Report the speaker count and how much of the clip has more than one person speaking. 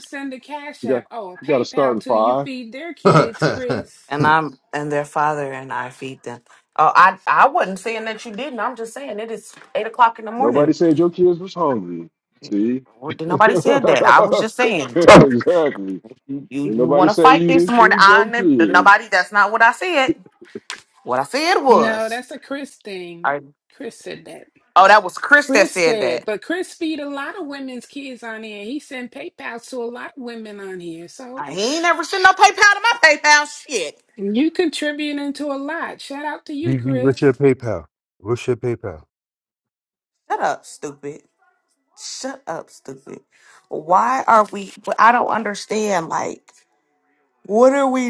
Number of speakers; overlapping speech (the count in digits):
4, about 12%